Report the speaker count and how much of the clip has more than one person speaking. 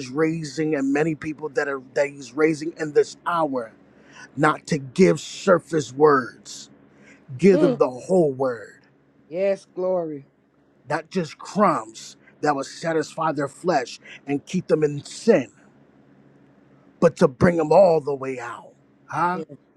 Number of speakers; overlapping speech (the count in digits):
2, about 2%